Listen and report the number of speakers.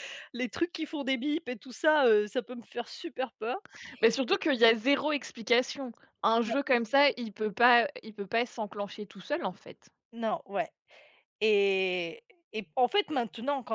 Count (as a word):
two